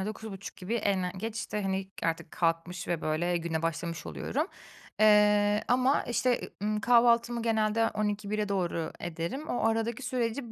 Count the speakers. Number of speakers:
one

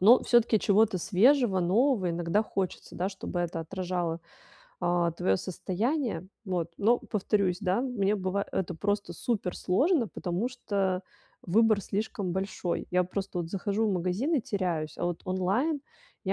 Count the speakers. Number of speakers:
one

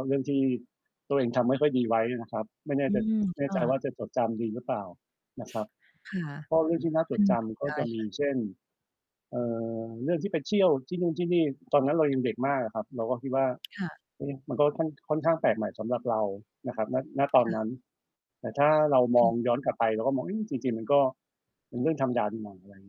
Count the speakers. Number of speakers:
two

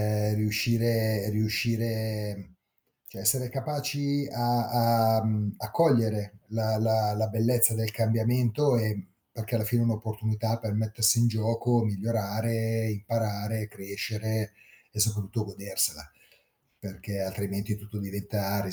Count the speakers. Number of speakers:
one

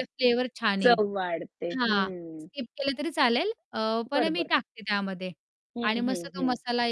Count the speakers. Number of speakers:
two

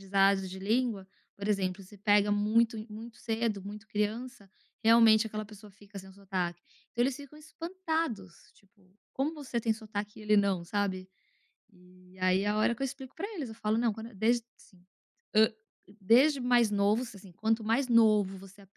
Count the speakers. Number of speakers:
one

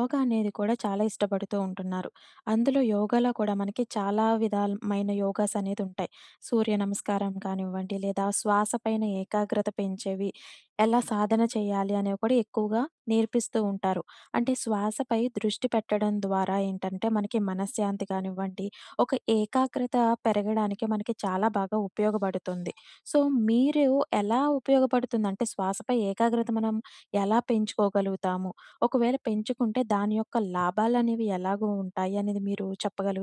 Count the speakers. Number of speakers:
one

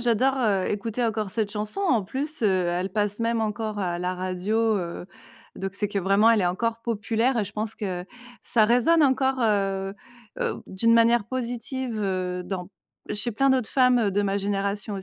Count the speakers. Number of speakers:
one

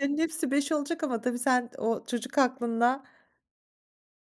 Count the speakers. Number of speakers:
one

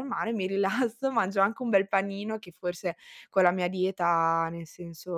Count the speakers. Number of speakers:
one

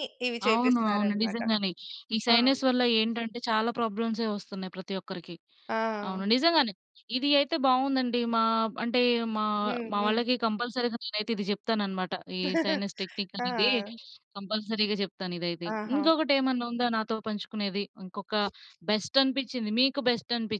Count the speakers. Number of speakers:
two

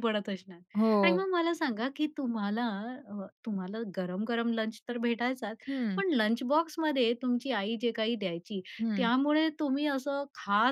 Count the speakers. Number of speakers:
two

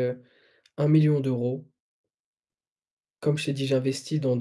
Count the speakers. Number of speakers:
one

